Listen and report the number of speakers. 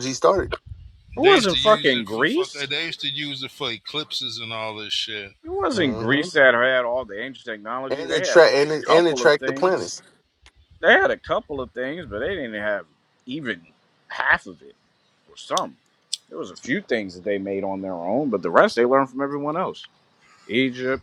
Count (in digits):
3